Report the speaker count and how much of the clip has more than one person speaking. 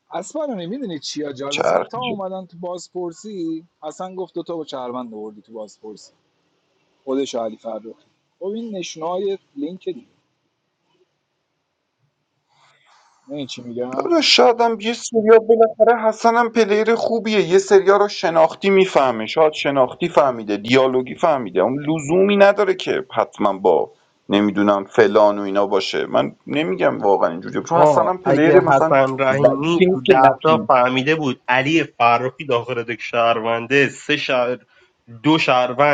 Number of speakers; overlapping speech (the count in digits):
3, about 5%